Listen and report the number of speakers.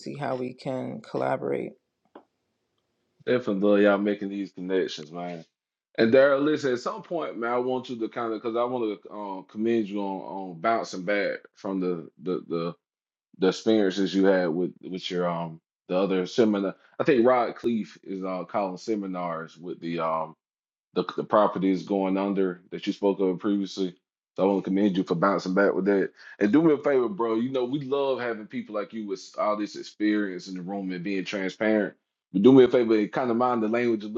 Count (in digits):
2